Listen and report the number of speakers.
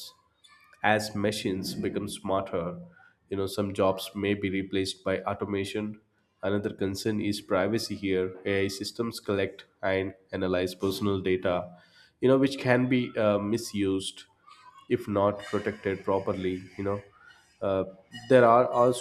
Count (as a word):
one